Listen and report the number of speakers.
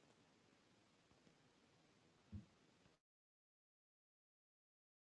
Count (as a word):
zero